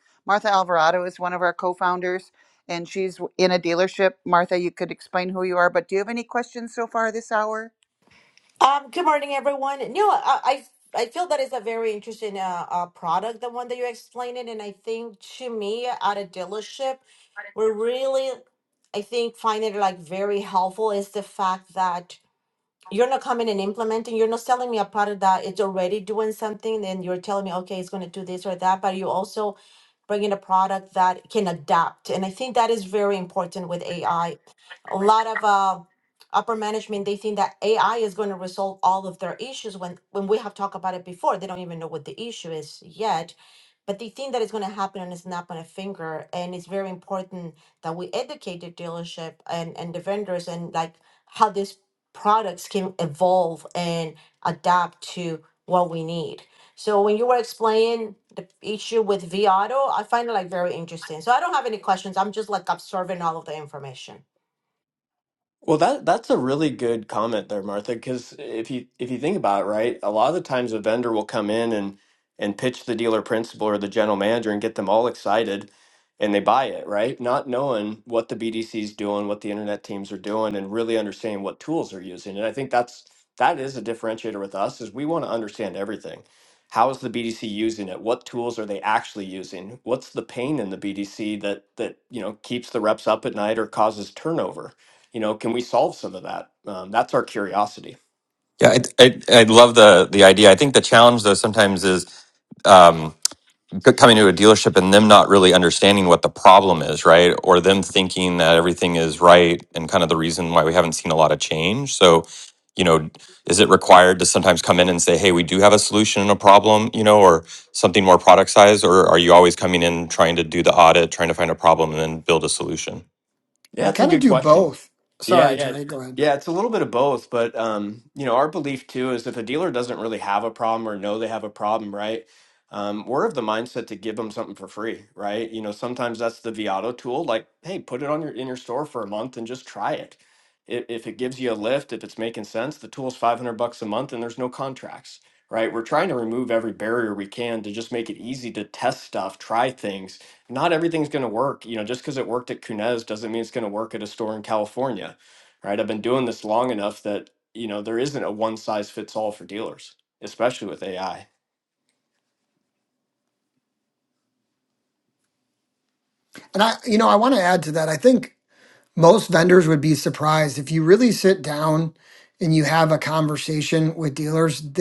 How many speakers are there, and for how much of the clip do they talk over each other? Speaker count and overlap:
five, about 1%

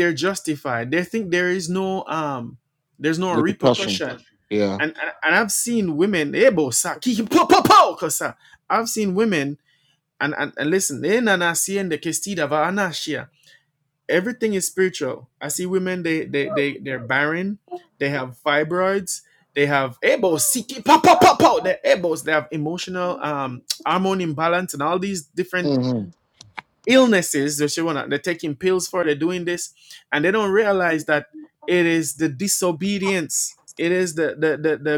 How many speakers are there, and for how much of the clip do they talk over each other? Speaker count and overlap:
two, about 2%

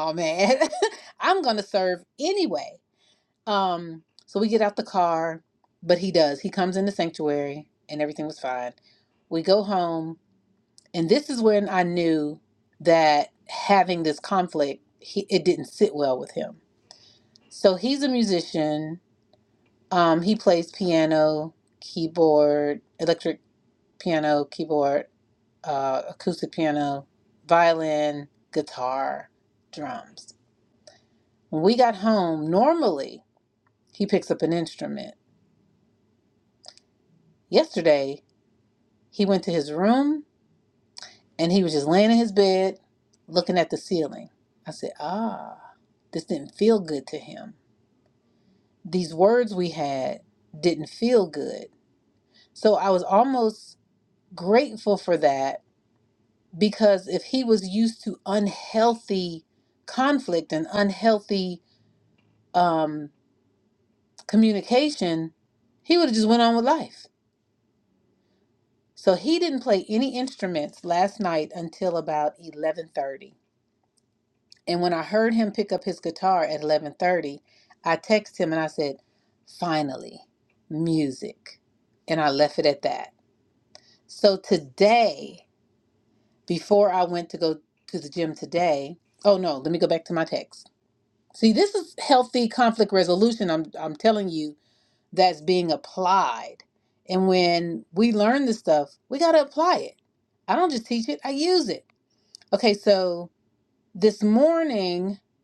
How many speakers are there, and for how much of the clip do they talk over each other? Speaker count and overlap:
one, no overlap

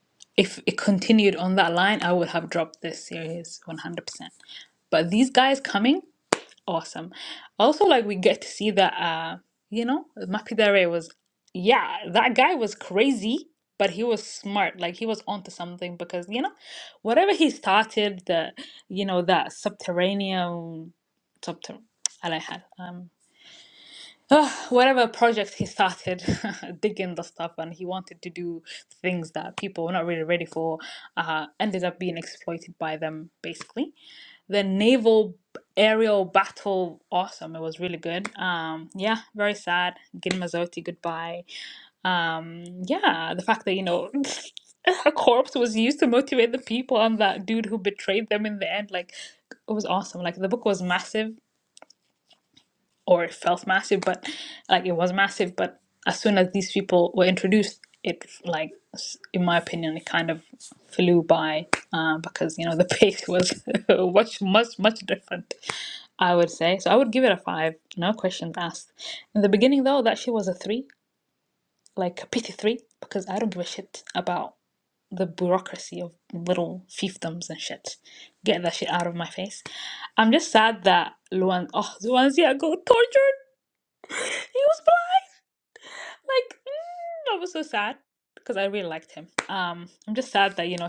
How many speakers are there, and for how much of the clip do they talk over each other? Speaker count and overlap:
one, no overlap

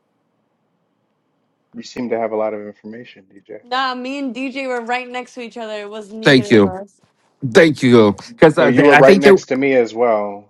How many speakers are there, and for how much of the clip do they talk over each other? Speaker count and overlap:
three, about 12%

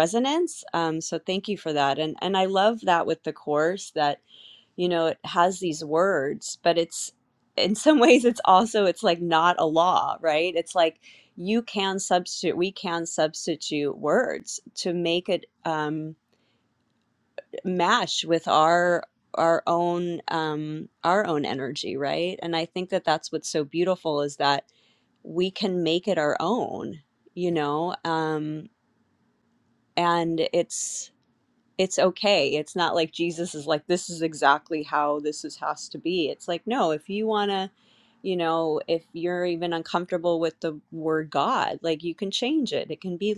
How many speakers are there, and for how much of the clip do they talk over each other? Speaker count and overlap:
one, no overlap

